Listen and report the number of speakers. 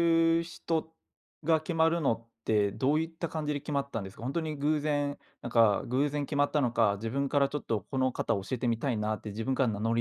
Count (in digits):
1